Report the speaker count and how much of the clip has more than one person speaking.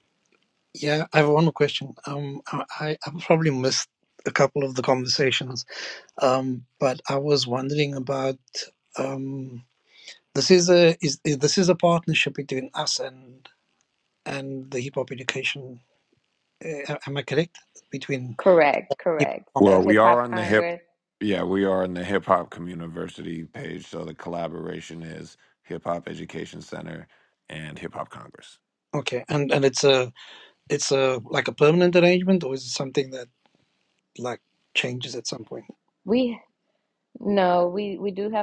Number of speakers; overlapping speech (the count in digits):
3, about 4%